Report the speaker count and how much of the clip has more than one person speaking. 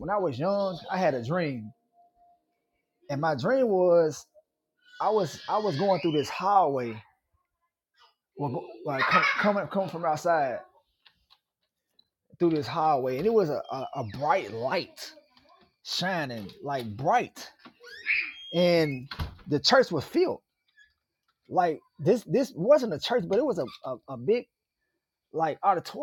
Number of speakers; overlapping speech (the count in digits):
1, no overlap